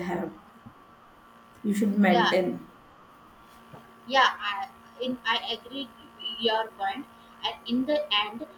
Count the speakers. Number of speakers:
2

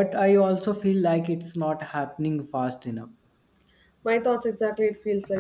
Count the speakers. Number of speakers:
2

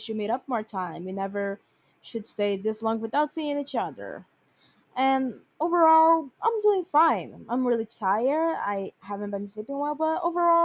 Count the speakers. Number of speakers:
1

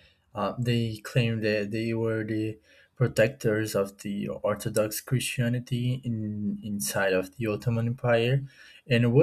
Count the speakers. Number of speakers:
1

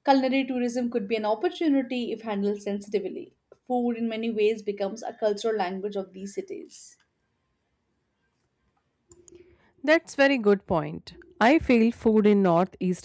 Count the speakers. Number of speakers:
2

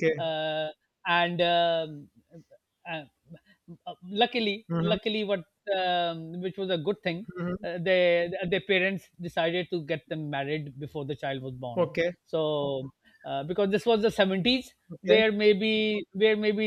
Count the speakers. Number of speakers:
2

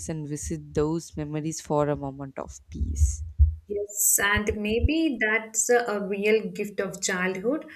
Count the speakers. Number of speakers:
2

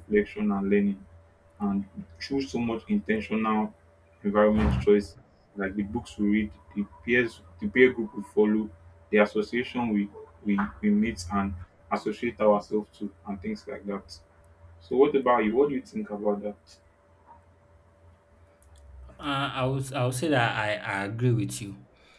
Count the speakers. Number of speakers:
2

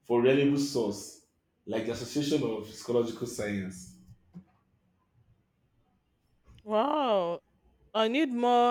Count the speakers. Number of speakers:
2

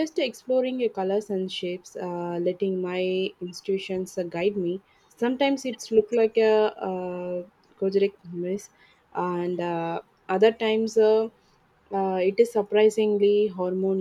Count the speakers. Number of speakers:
1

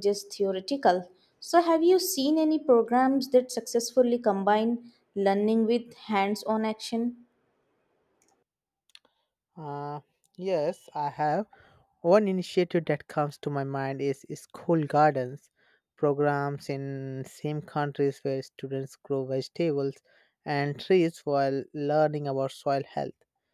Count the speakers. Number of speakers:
2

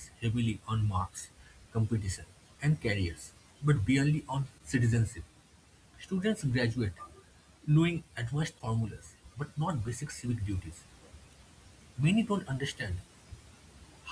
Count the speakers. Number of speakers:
1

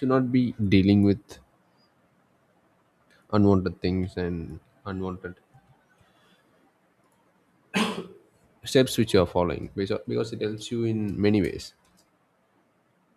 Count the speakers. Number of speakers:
1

